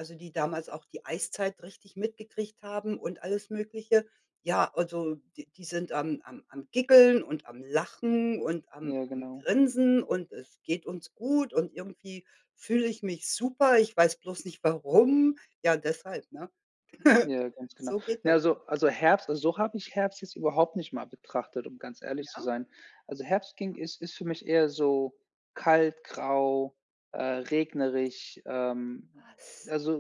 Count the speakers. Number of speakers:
2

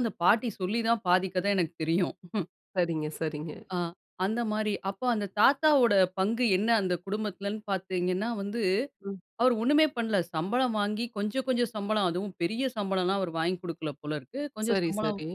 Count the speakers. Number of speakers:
2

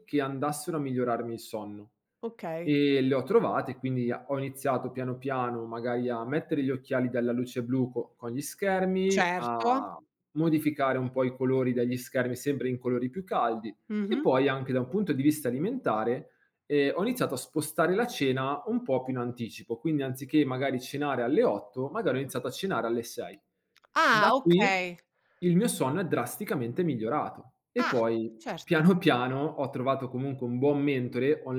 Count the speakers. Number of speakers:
2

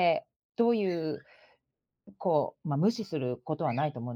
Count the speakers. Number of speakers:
1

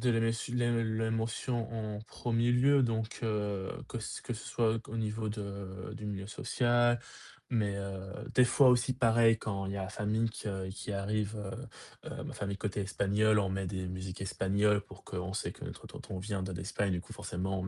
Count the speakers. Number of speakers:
1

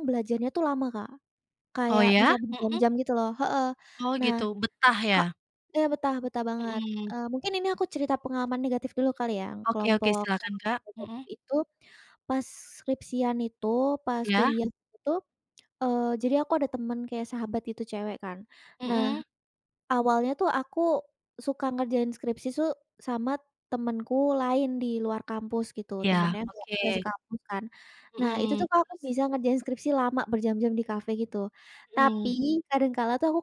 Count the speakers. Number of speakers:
2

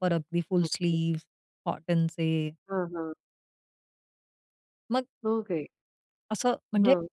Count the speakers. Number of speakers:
2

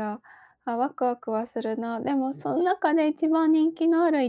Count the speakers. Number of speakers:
1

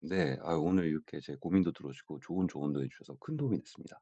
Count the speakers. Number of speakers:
1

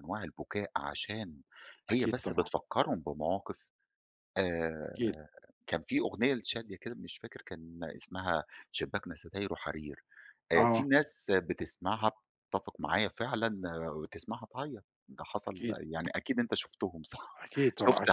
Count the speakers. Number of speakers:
2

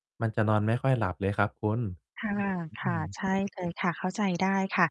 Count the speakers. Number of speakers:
2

